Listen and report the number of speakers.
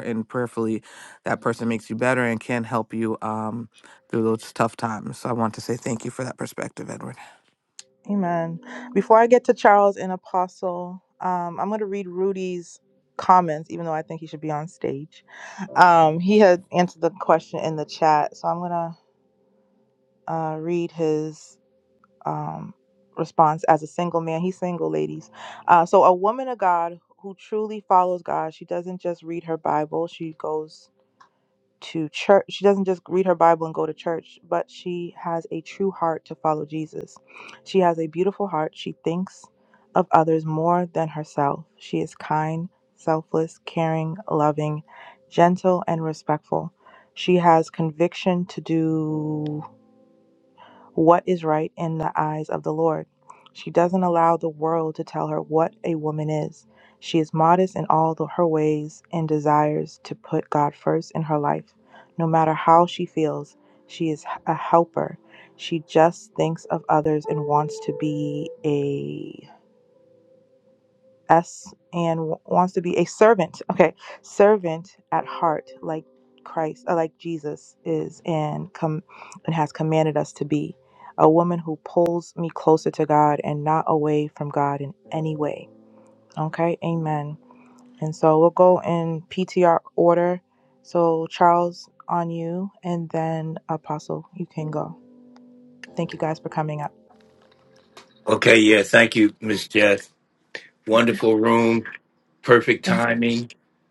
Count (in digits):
3